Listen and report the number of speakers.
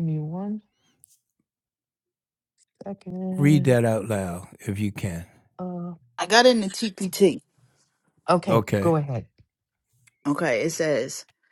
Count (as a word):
three